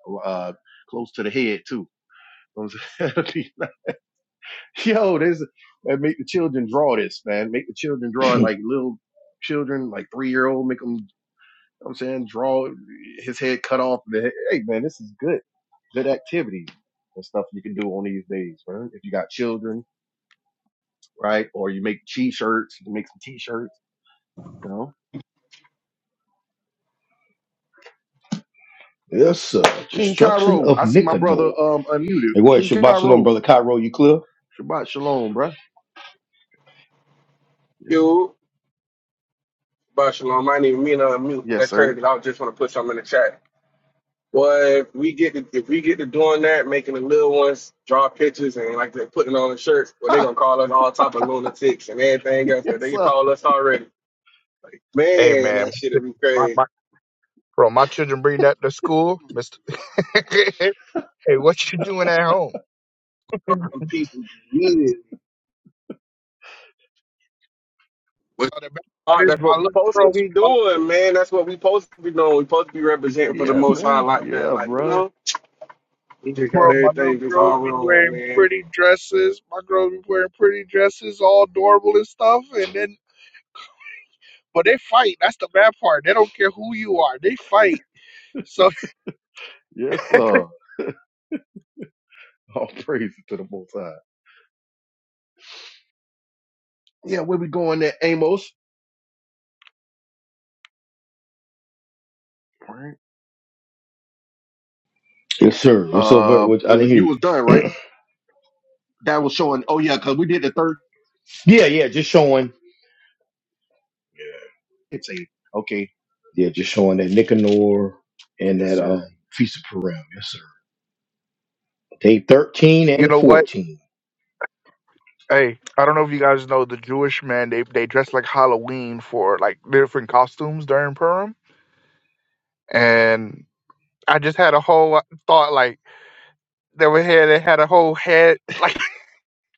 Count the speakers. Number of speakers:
four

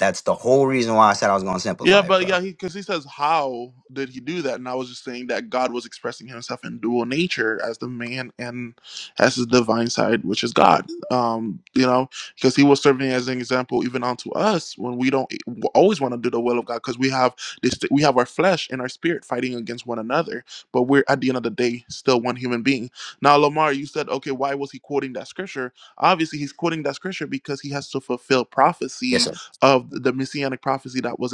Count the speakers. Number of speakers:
two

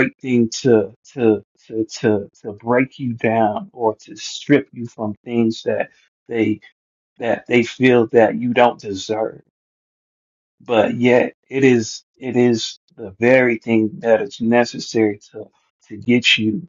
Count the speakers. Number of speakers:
one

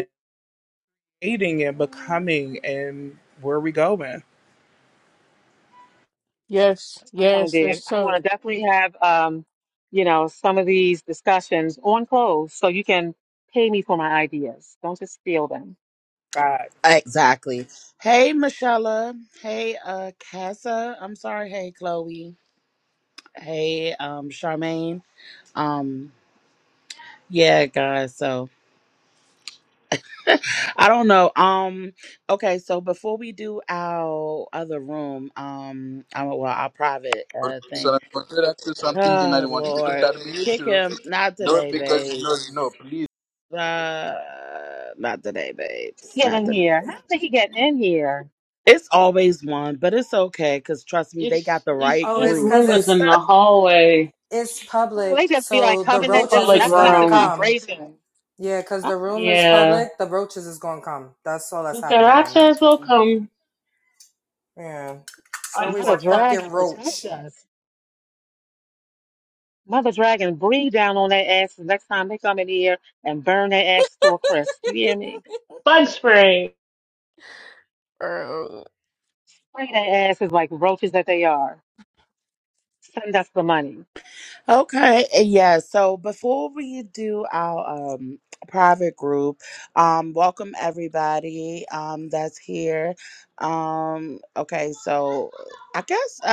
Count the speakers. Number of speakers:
seven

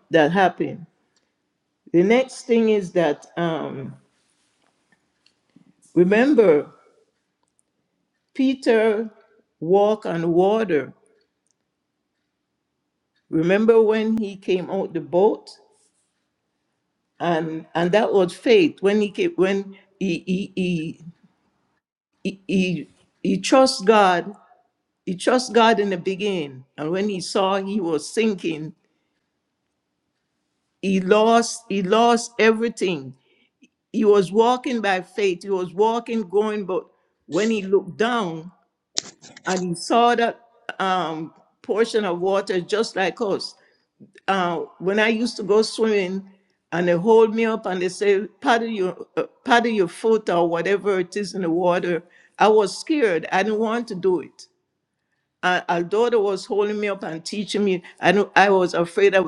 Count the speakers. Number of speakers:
one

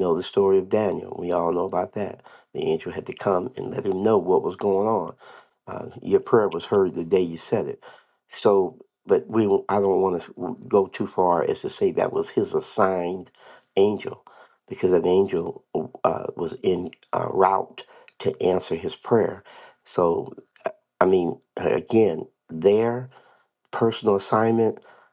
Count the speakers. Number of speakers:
one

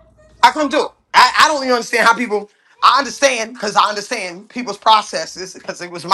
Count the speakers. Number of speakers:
one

